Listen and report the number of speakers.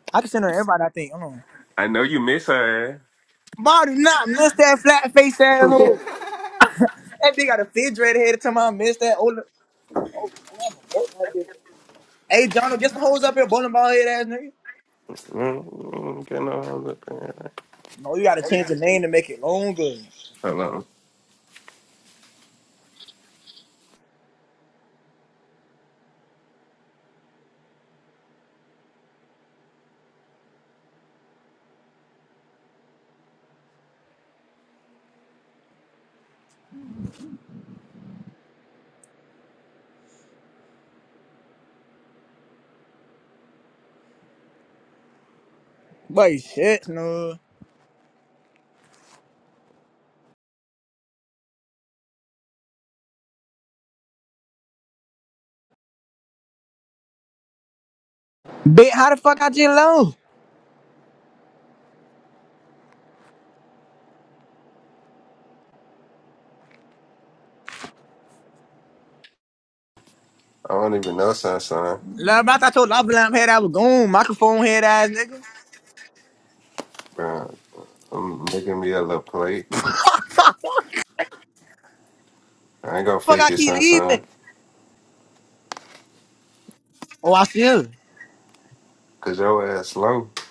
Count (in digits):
2